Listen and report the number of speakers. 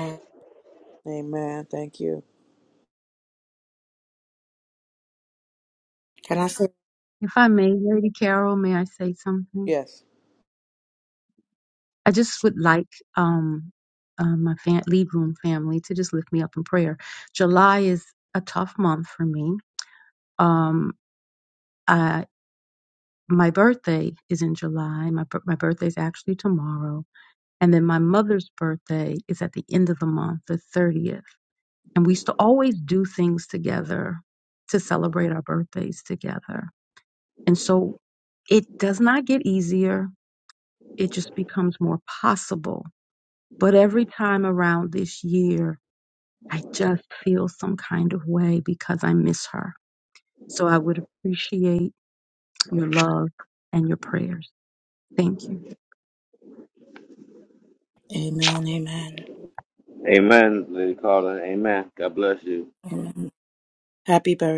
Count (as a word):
four